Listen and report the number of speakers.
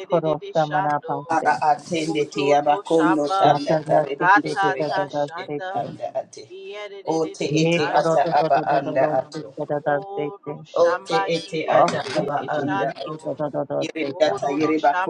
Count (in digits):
3